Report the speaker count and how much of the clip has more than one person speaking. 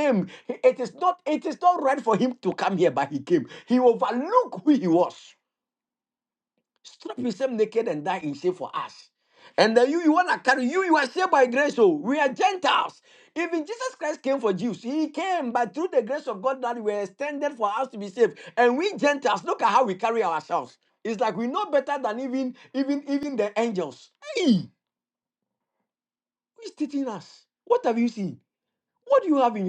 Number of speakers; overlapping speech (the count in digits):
1, no overlap